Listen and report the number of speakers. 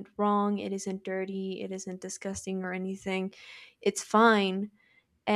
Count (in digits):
1